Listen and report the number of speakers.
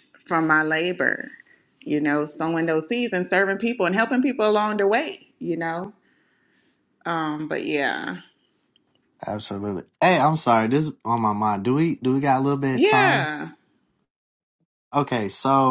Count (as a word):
two